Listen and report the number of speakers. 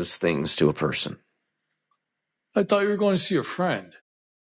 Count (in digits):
2